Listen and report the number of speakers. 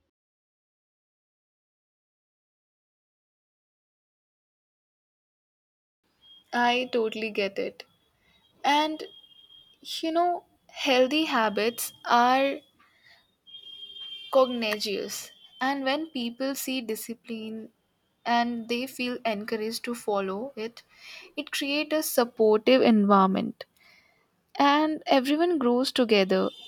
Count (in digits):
1